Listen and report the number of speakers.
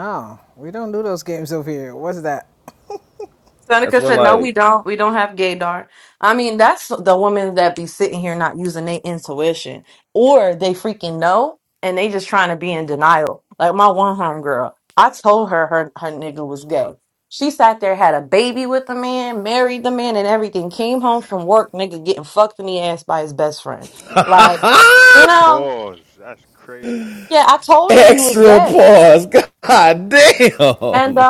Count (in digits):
4